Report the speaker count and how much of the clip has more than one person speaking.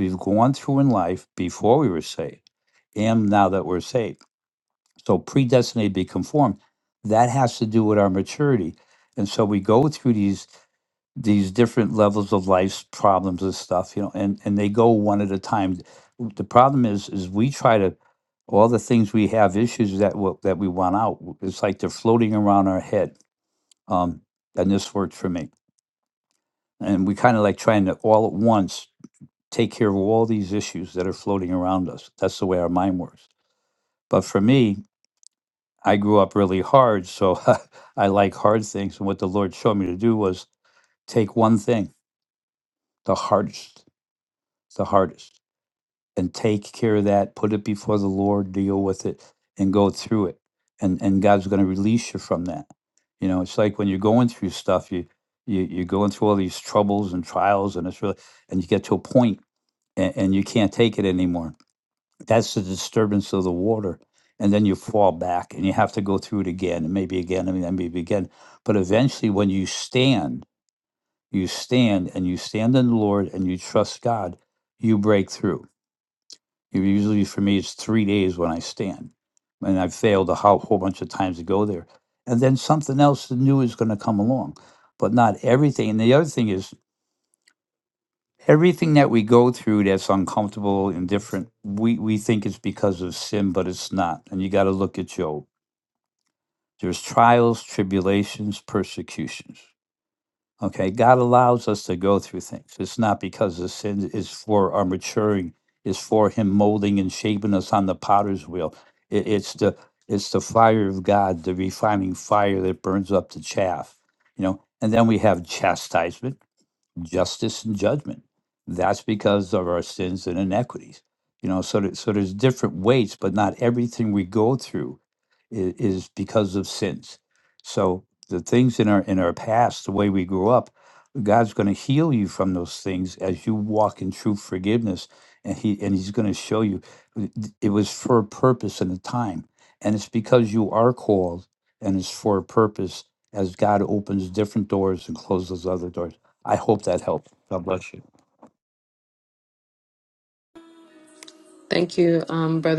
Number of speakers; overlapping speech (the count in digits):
2, no overlap